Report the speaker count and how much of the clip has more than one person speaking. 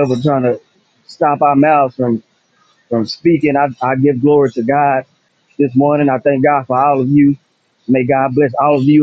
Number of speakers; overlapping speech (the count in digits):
1, no overlap